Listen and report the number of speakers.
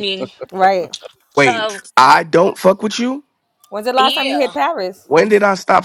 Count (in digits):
3